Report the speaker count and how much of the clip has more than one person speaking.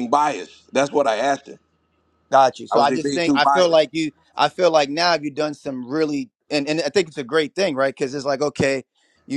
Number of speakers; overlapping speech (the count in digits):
2, about 11%